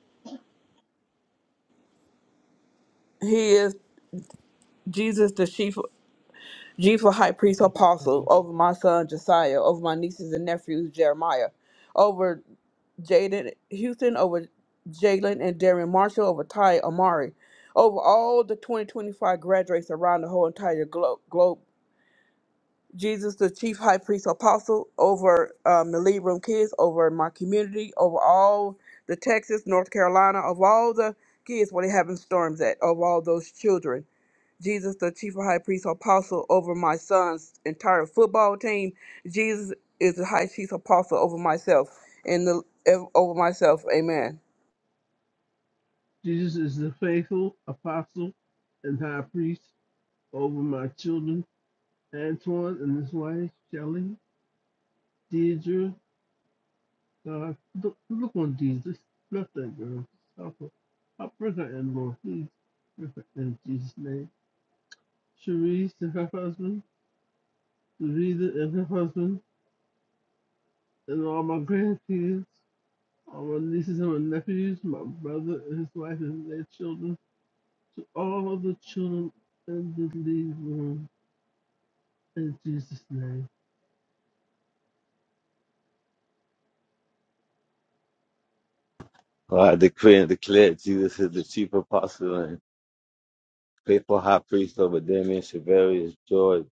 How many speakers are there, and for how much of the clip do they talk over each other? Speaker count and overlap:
three, no overlap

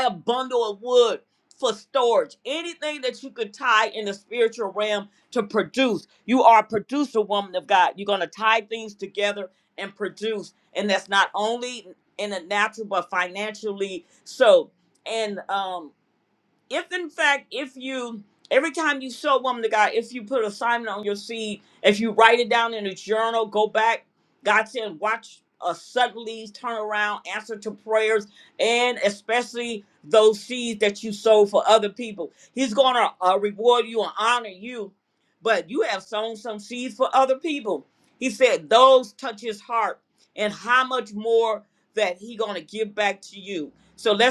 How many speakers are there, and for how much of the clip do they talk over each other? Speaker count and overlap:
one, no overlap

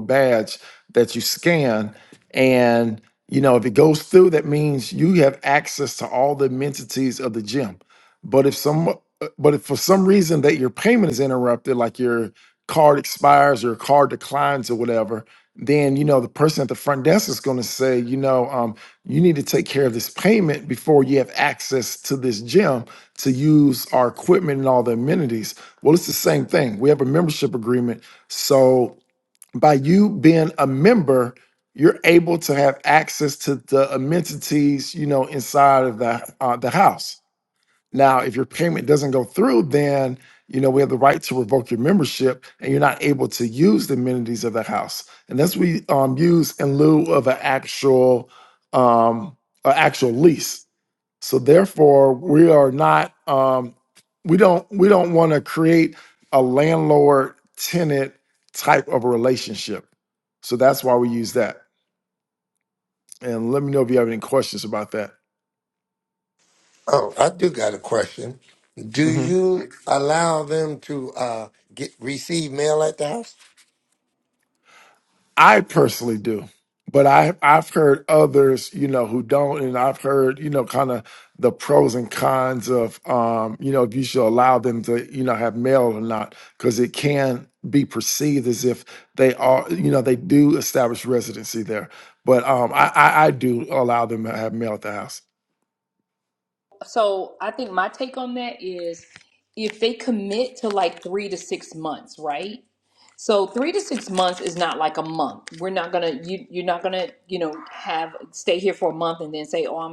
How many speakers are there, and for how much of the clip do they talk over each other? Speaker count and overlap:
three, no overlap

